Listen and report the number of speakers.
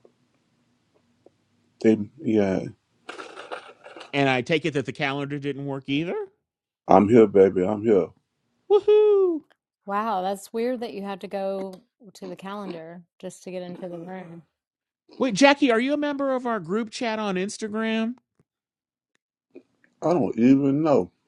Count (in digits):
3